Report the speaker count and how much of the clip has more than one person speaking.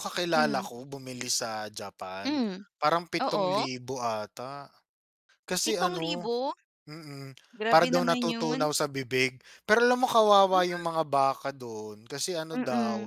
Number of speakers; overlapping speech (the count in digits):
2, about 24%